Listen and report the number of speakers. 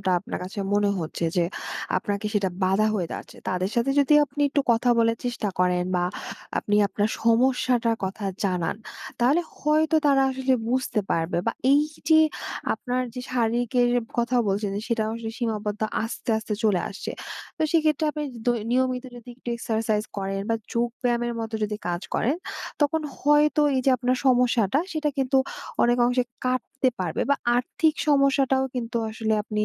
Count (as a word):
one